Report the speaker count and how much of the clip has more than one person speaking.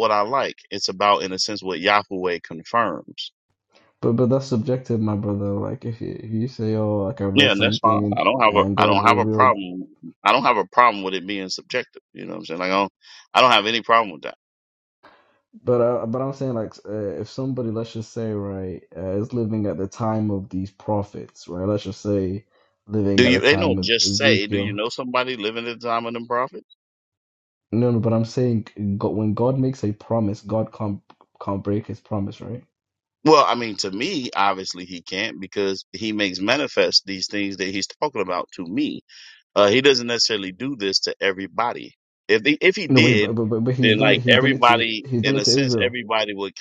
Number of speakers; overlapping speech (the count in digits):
2, about 13%